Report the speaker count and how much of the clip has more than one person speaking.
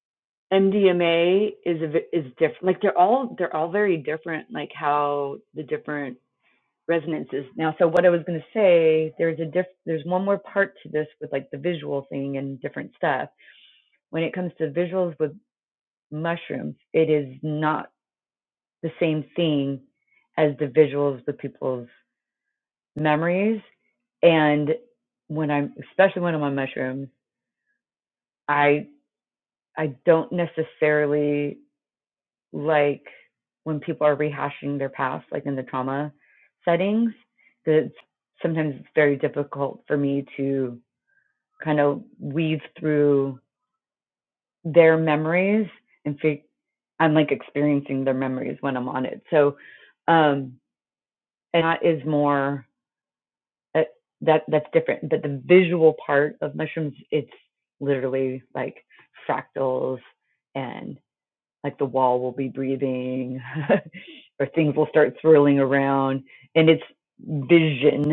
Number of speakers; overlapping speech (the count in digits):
1, no overlap